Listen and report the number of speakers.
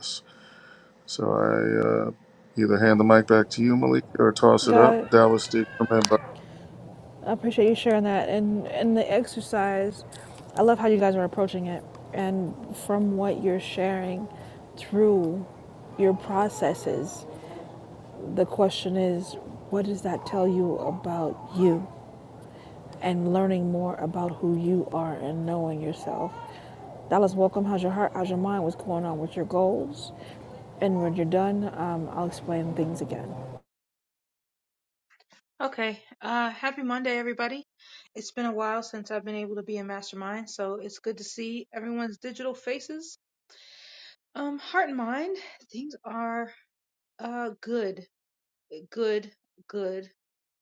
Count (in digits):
3